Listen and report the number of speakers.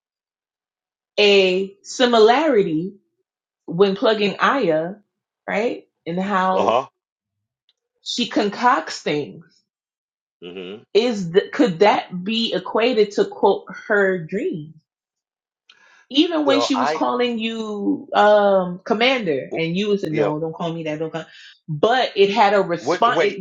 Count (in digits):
2